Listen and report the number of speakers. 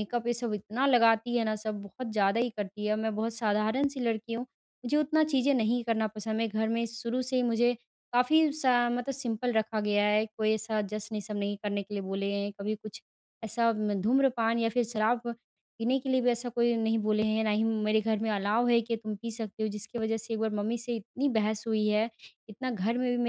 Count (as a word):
one